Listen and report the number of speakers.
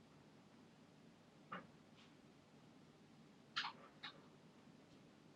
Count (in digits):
0